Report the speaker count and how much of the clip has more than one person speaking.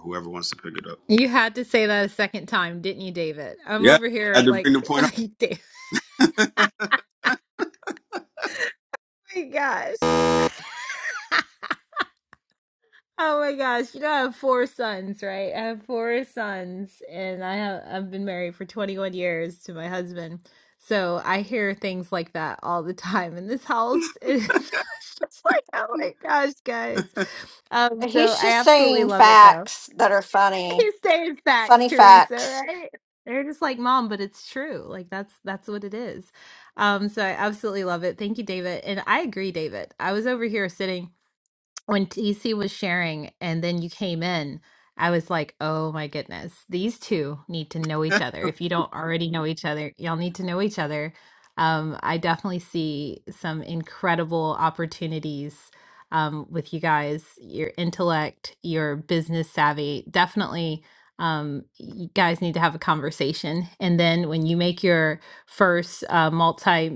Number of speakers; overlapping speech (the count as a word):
three, about 5%